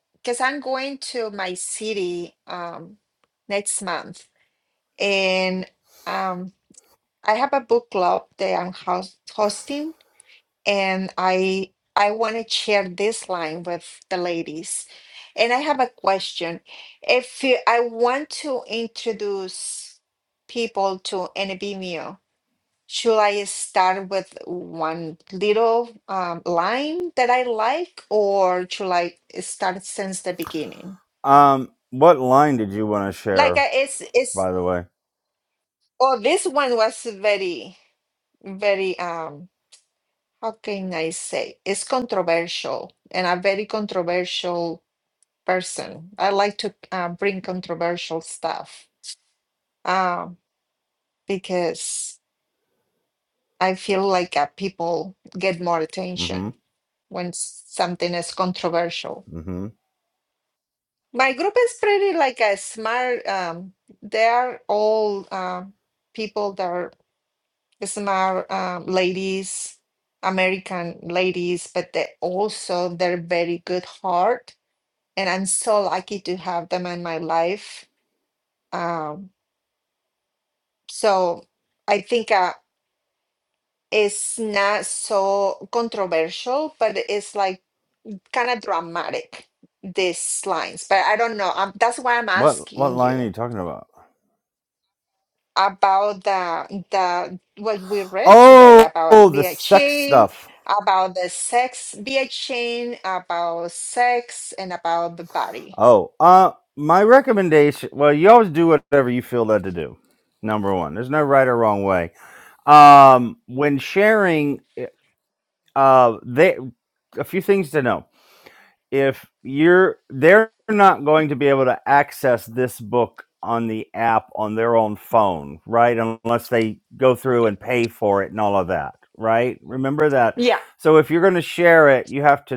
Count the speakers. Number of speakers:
2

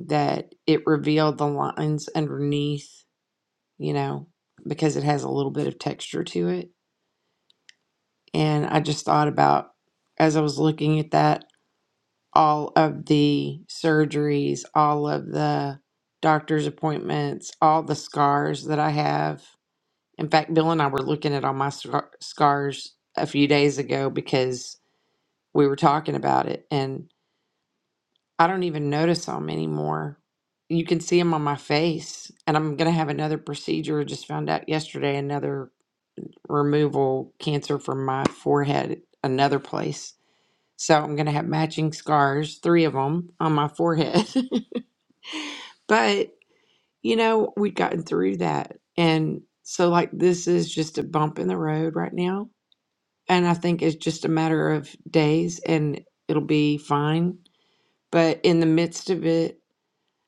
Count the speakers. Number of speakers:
1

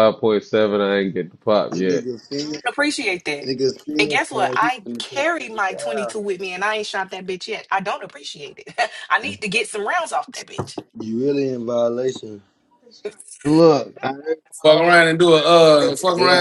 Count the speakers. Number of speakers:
4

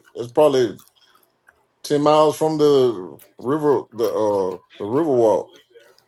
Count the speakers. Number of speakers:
1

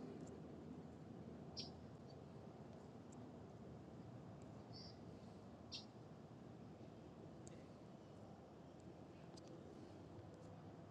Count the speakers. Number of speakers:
0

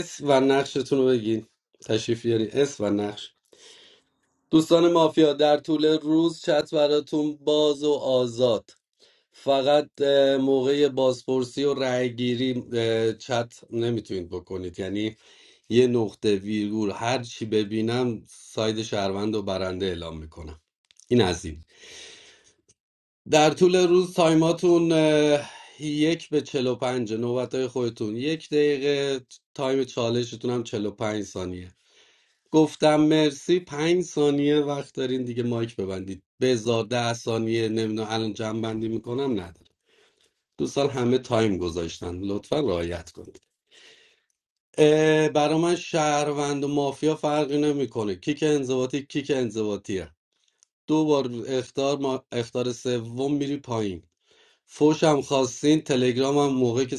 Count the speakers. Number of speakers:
1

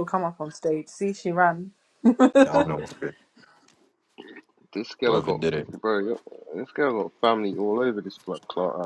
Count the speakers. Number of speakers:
3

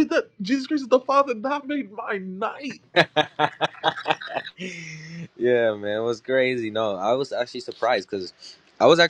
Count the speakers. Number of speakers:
2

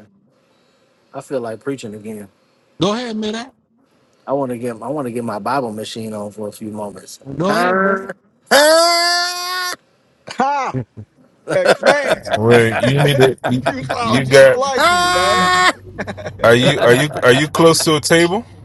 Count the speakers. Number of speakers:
4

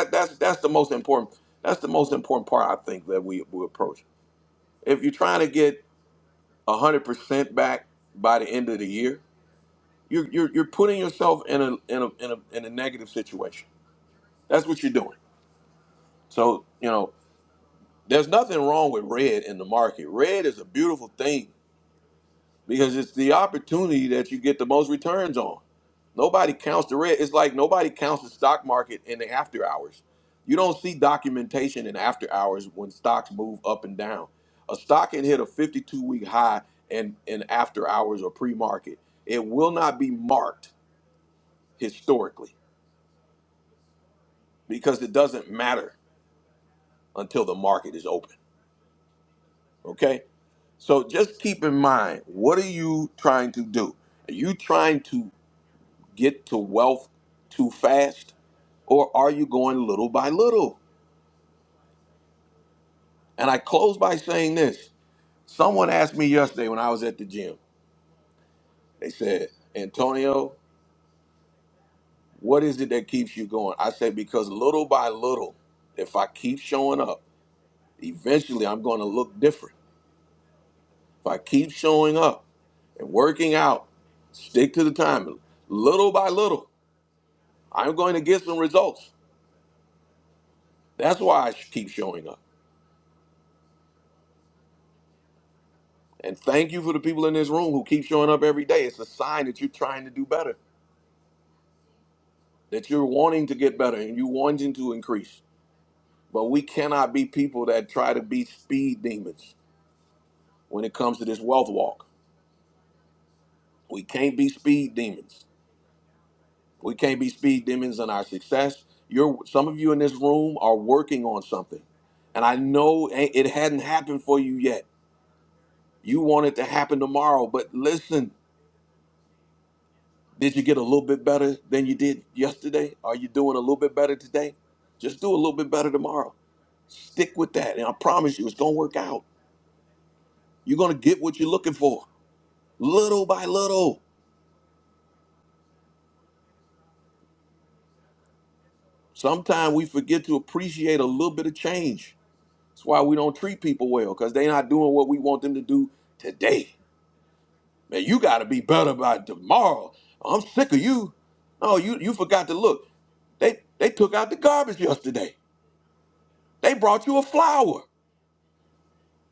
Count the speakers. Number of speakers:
1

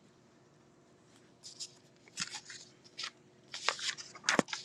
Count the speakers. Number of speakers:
0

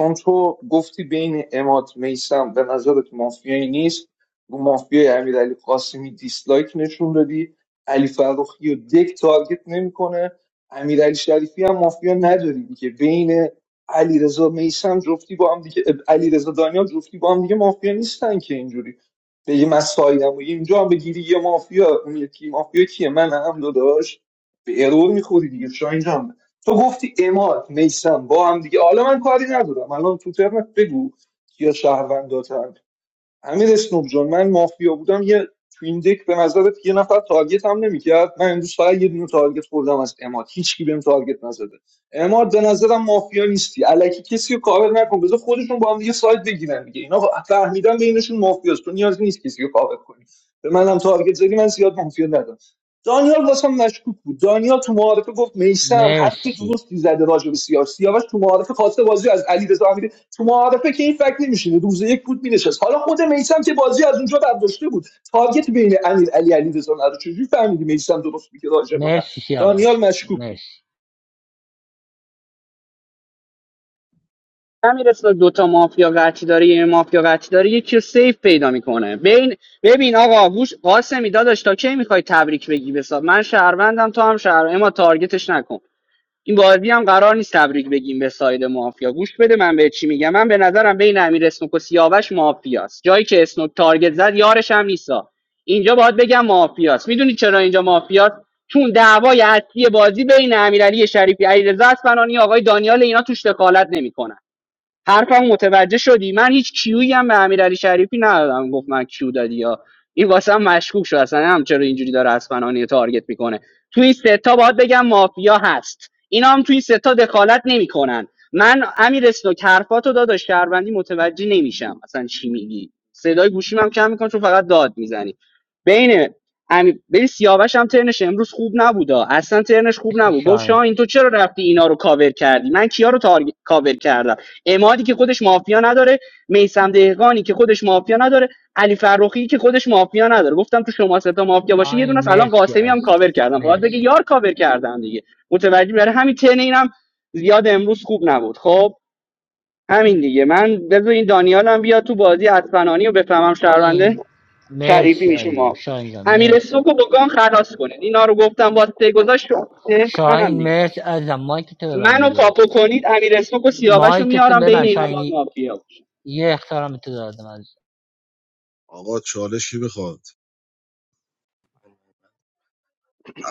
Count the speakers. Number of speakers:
4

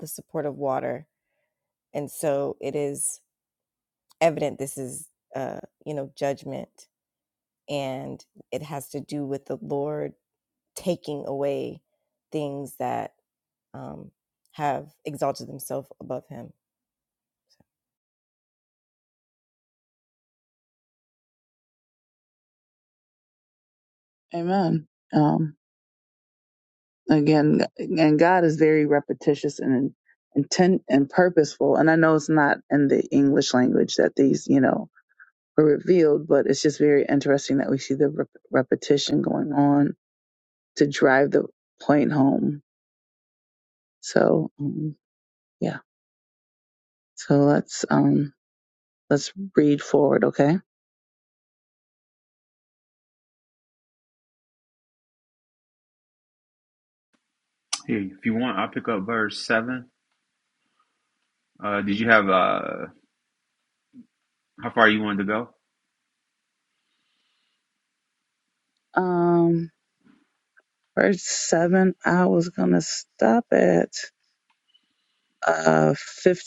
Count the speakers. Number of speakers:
3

